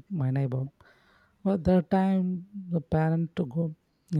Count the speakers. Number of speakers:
1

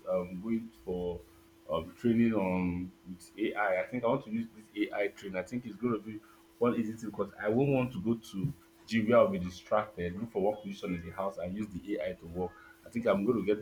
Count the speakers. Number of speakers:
1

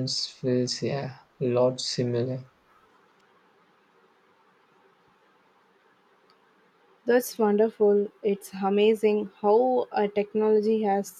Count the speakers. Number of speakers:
2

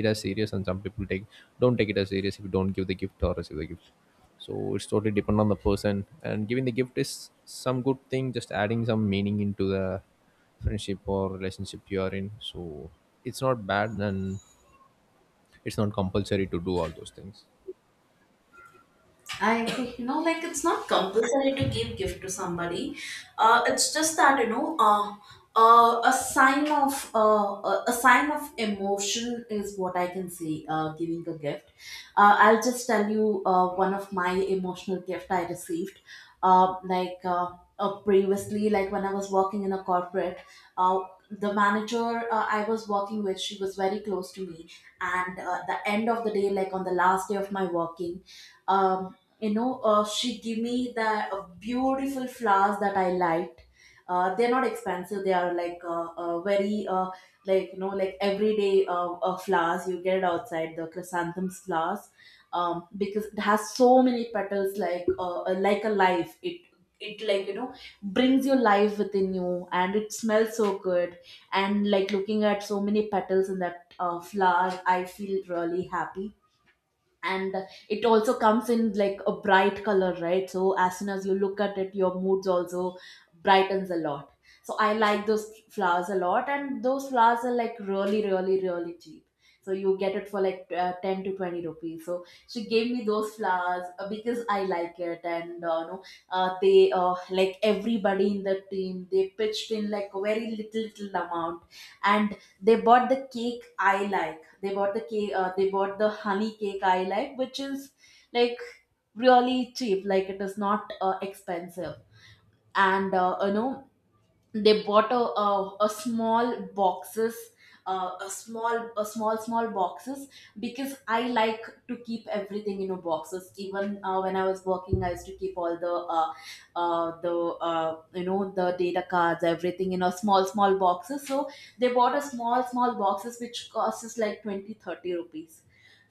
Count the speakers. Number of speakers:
2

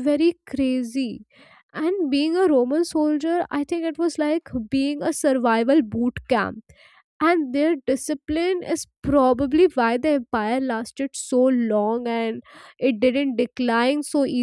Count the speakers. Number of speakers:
1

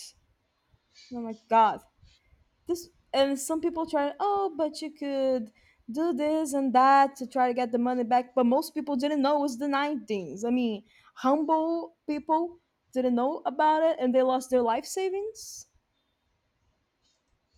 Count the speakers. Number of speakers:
1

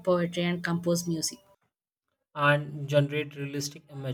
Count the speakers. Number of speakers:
2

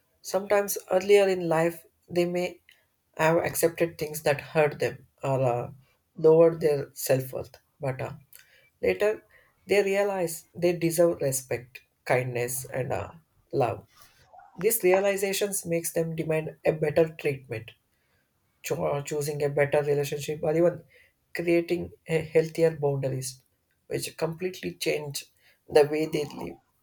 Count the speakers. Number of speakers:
1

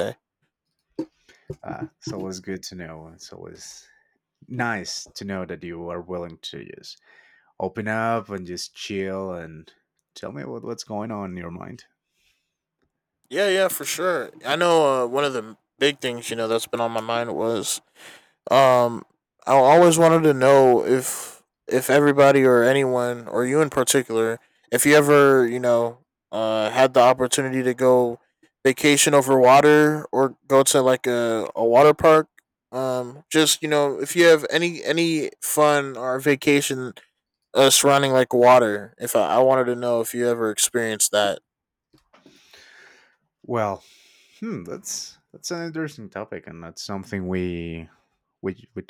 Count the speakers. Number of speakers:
2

